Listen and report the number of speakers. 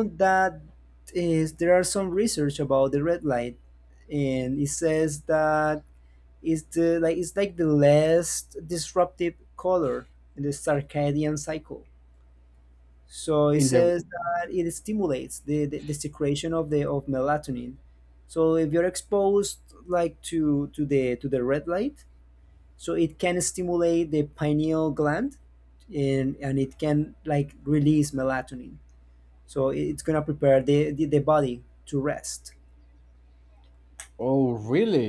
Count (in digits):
2